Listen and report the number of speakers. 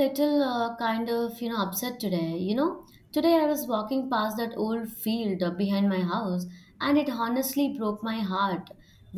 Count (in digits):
1